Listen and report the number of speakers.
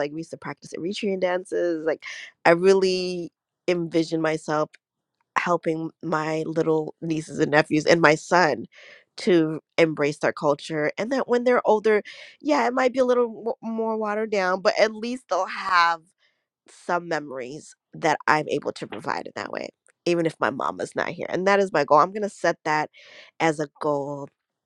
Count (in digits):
1